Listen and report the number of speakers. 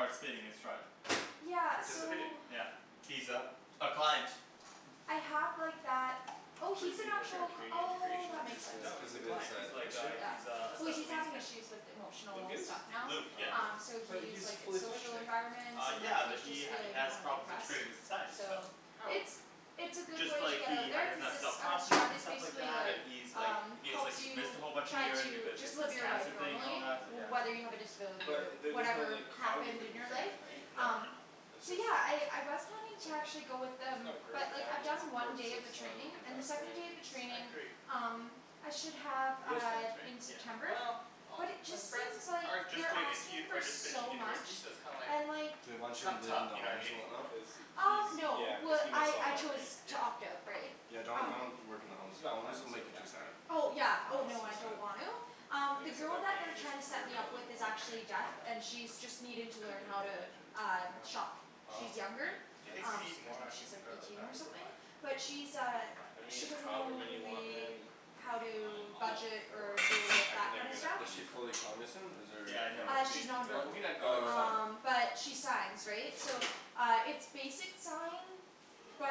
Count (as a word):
four